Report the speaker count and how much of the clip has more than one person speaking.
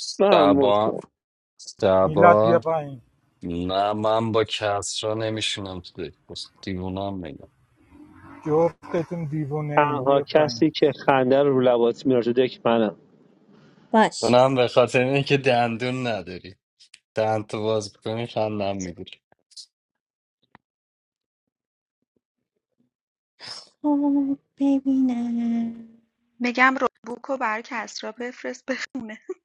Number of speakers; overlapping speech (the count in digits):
5, about 7%